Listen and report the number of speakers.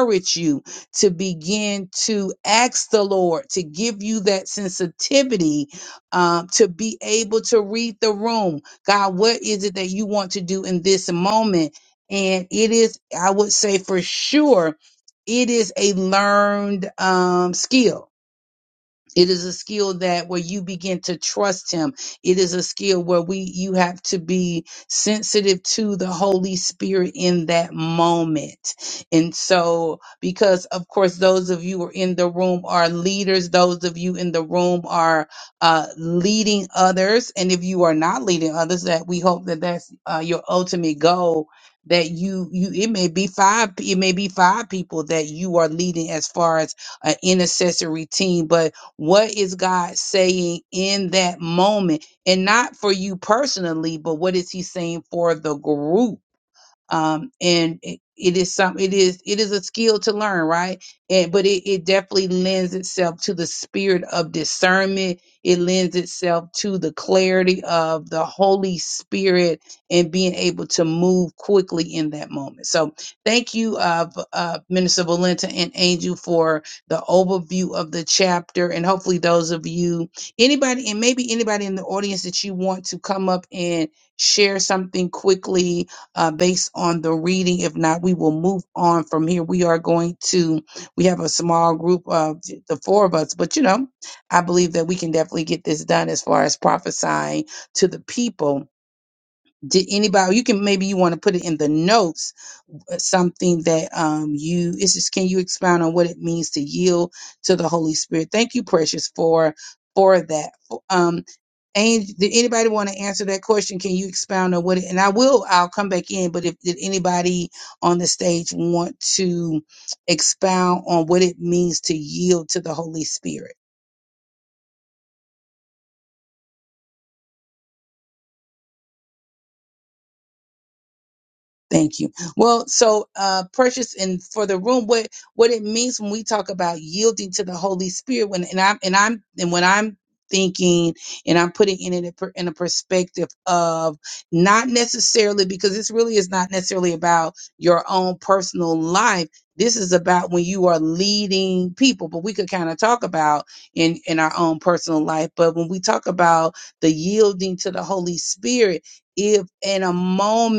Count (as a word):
one